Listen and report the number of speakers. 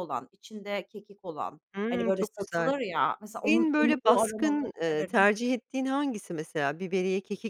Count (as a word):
two